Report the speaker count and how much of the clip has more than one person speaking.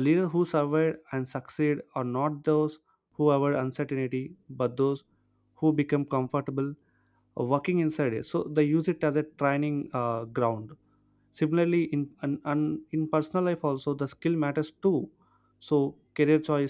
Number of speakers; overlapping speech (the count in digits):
1, no overlap